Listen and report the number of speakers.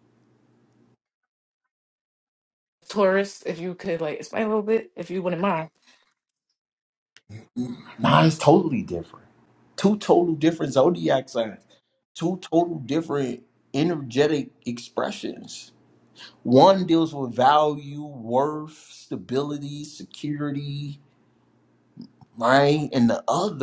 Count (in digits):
2